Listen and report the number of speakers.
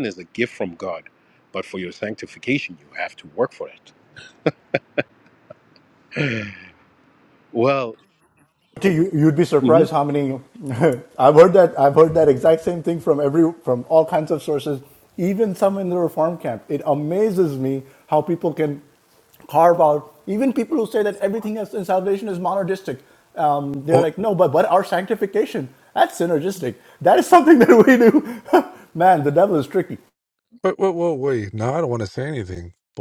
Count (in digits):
3